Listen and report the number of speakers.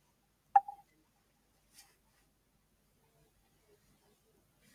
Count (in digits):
0